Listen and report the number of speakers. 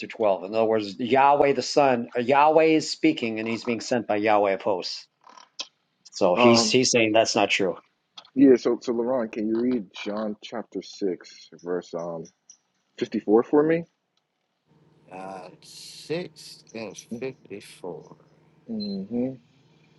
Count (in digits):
3